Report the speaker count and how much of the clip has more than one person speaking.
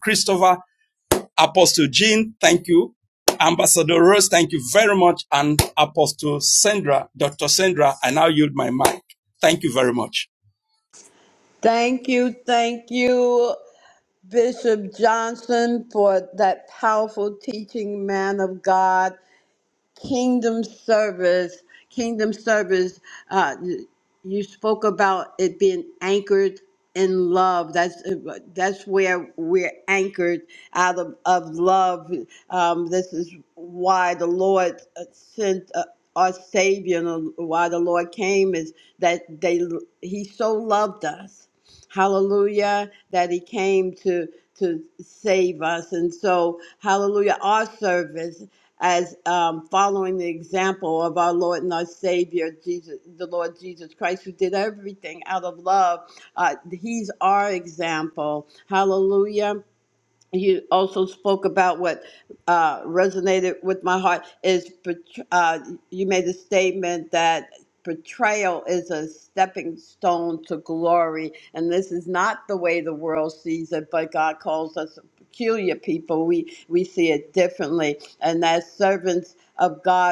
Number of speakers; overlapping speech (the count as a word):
two, no overlap